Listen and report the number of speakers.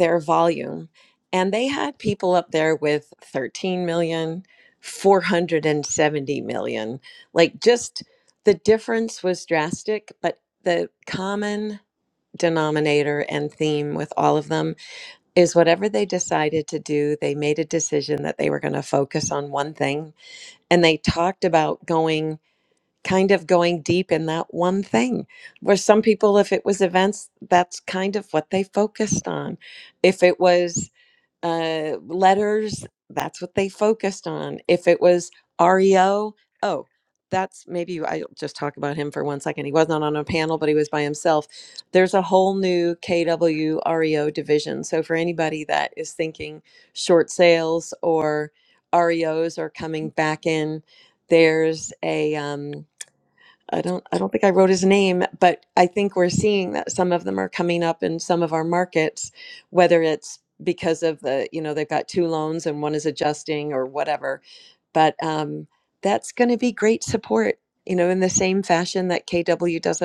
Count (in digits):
1